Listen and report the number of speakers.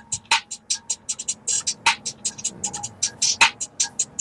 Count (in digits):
0